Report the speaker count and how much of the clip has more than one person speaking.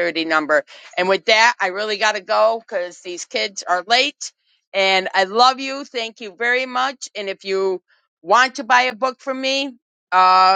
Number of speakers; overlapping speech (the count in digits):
1, no overlap